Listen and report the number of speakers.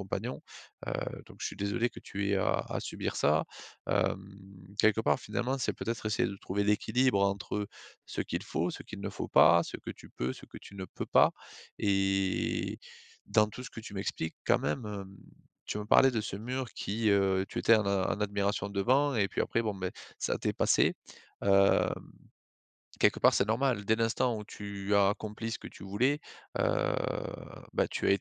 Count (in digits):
1